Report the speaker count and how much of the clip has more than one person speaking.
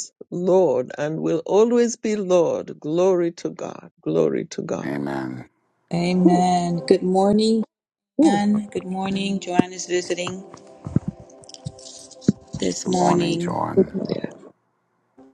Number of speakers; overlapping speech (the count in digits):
3, about 8%